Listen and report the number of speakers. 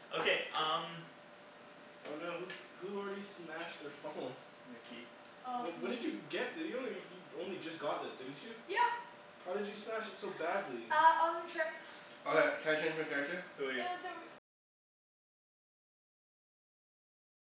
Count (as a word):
four